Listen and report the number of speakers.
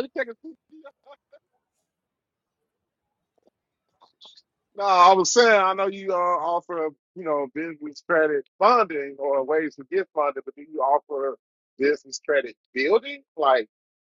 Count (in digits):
1